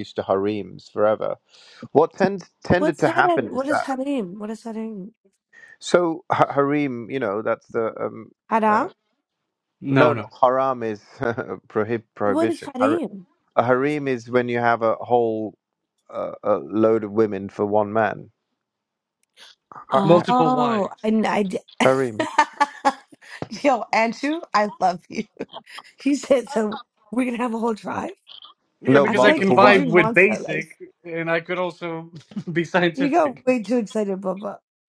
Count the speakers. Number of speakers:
3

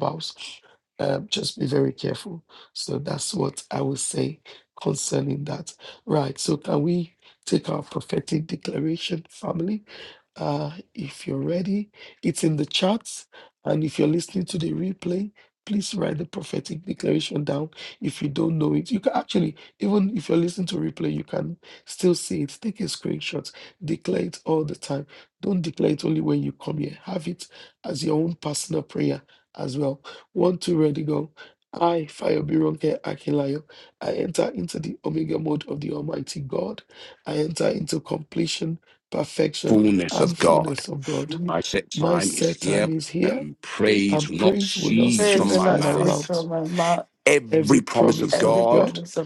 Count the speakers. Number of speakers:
3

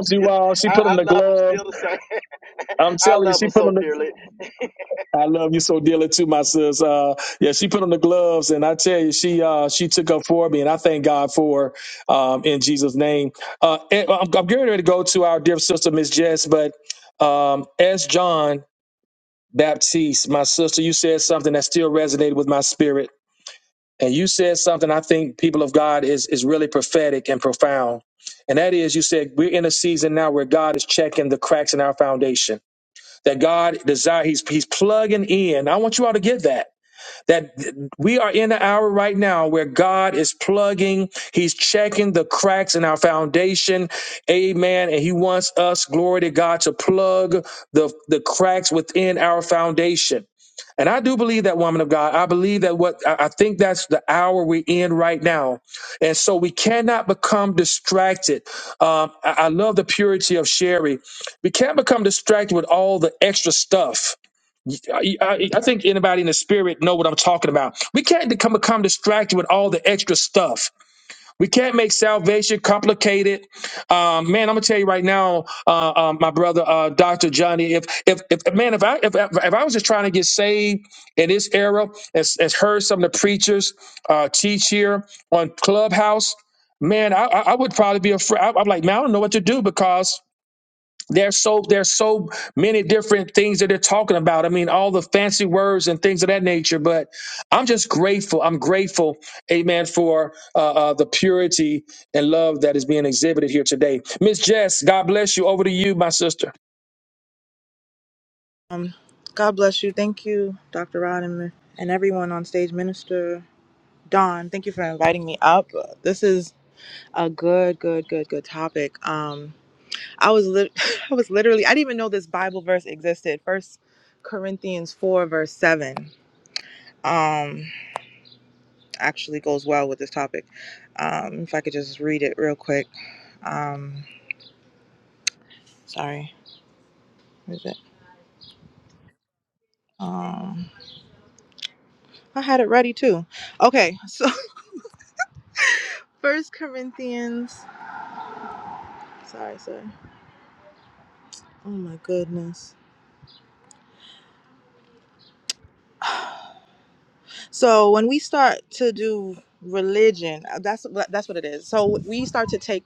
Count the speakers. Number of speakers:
3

